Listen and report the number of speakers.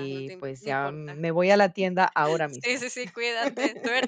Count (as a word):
two